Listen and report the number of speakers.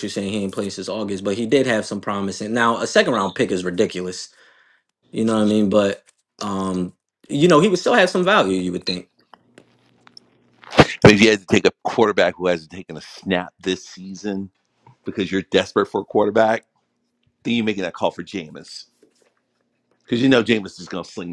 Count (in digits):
2